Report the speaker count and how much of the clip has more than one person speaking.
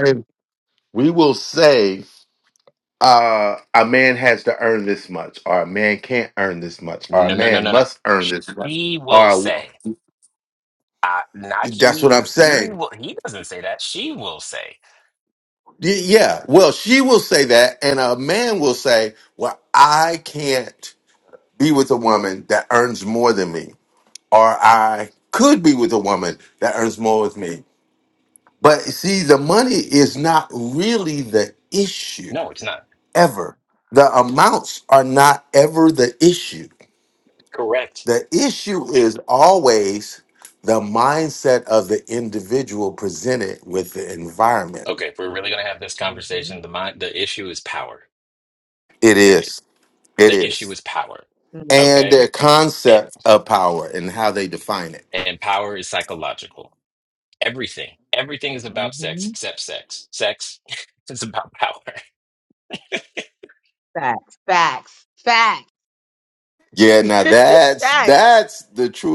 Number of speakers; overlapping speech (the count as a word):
three, about 8%